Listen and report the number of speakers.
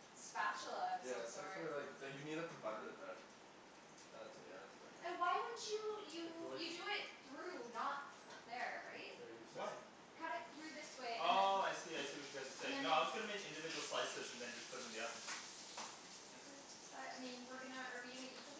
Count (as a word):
three